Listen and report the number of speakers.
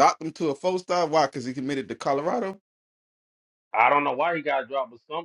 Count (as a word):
two